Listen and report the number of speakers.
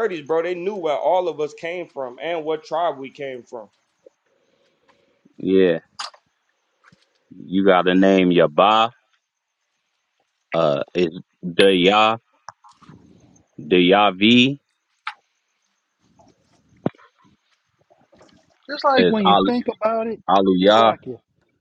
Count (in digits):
3